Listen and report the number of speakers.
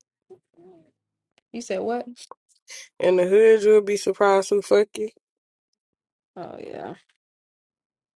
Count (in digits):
2